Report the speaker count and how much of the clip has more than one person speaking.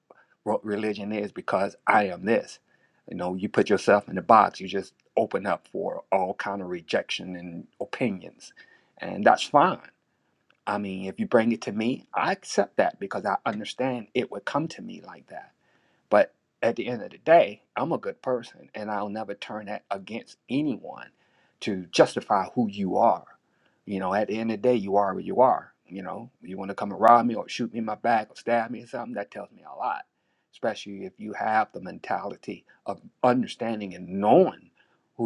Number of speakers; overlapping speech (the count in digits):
1, no overlap